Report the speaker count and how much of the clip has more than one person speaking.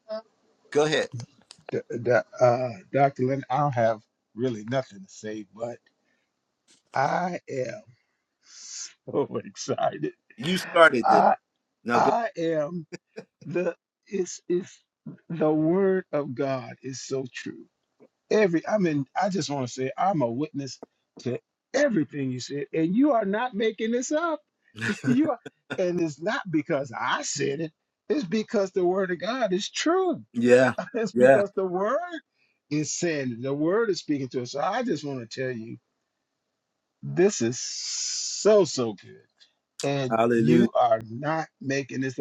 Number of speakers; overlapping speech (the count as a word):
two, about 3%